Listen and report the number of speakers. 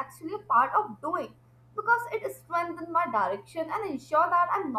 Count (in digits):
1